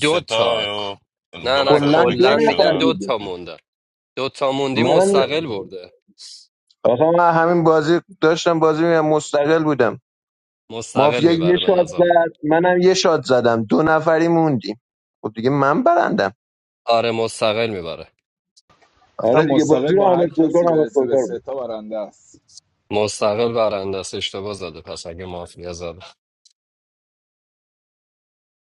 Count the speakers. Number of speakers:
4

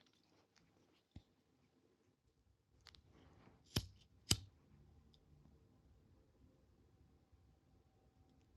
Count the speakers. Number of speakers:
0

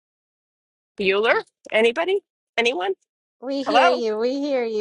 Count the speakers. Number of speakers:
2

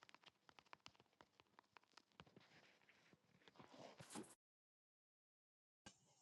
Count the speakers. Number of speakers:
0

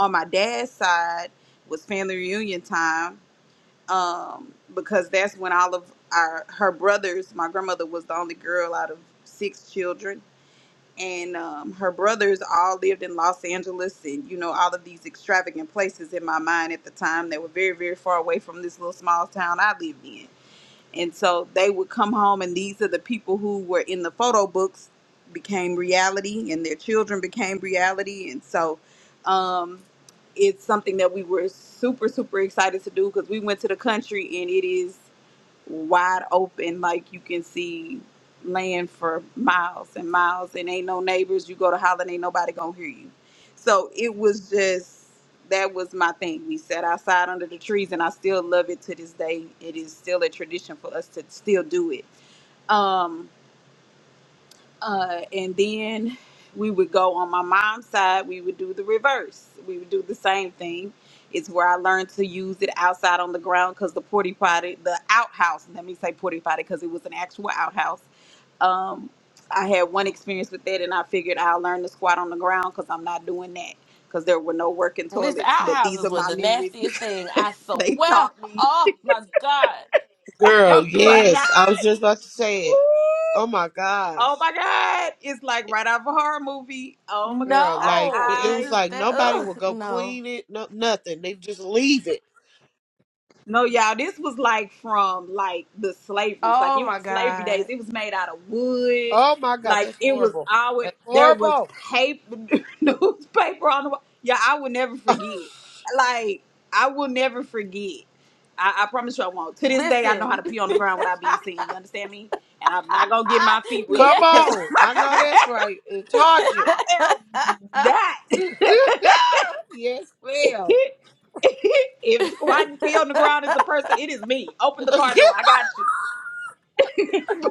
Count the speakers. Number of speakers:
3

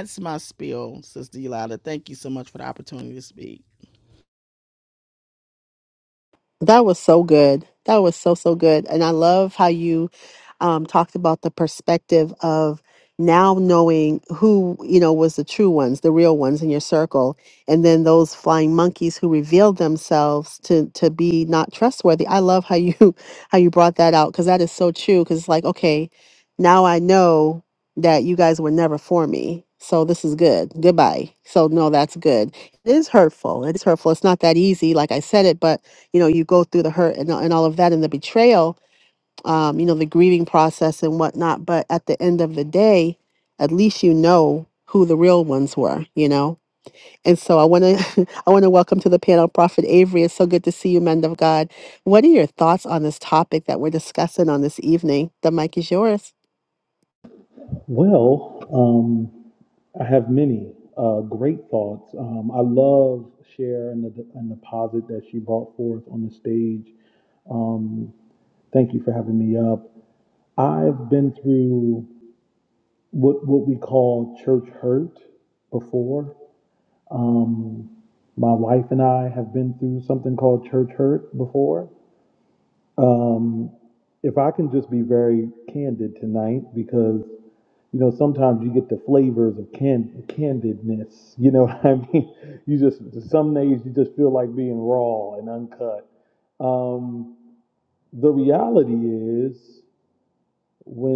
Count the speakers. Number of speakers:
3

